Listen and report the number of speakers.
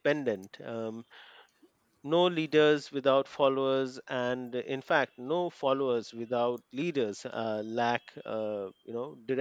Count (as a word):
one